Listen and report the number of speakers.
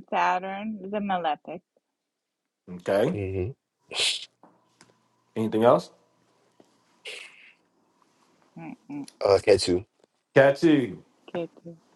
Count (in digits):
3